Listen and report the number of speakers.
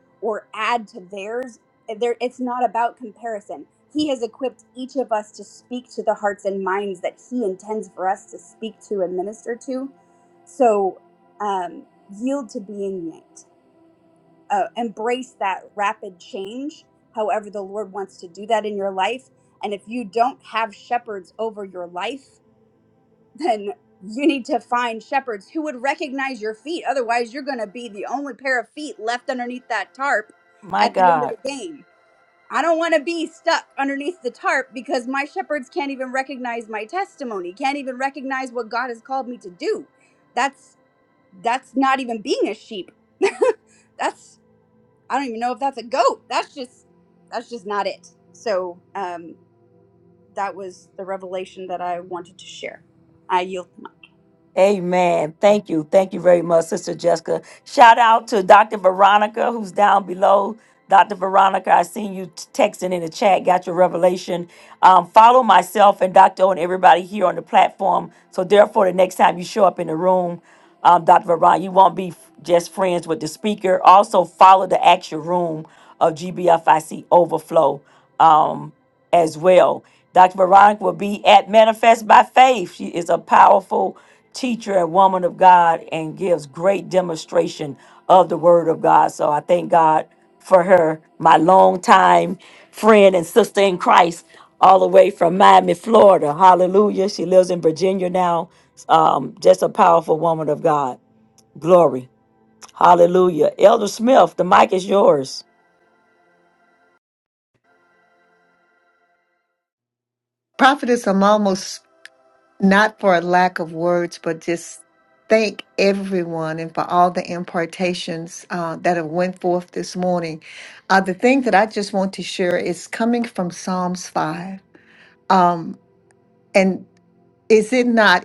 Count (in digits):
3